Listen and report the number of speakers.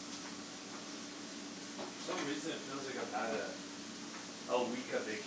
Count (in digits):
1